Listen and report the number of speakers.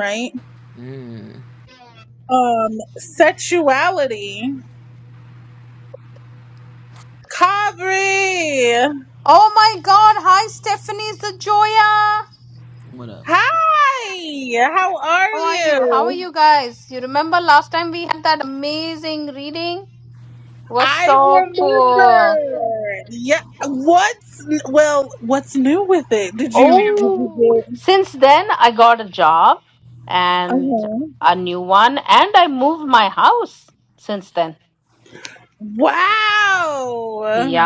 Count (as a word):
three